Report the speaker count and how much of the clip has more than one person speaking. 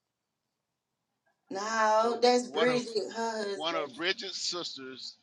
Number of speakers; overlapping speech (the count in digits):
2, about 15%